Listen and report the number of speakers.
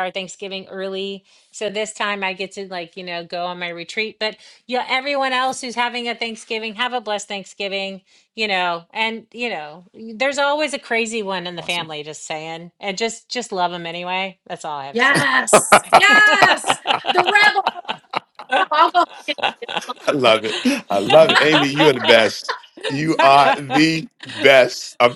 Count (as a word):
three